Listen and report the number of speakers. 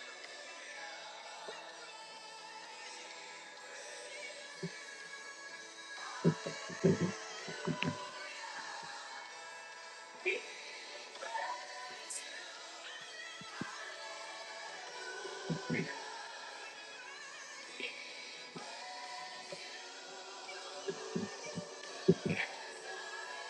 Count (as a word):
zero